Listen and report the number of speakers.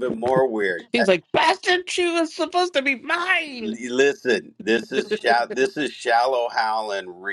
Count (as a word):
two